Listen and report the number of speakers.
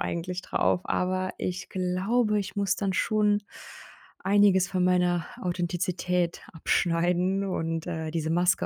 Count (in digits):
1